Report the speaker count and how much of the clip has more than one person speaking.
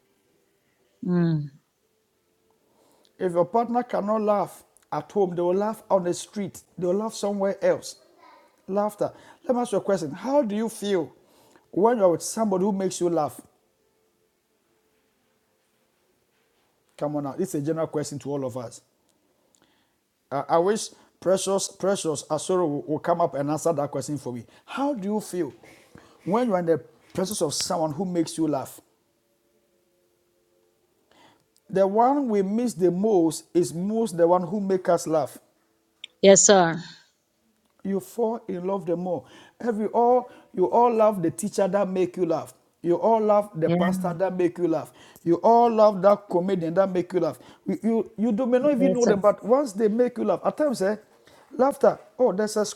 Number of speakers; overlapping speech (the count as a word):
two, about 1%